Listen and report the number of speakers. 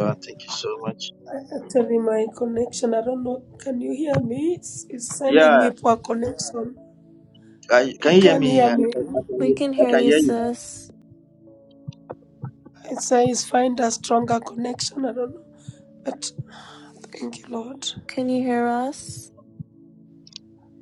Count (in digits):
3